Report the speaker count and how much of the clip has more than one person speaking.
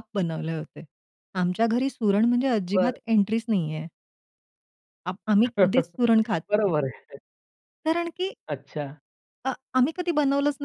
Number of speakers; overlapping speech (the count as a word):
two, about 4%